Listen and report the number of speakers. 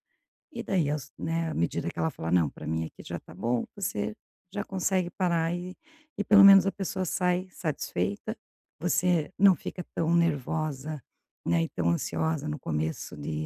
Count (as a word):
one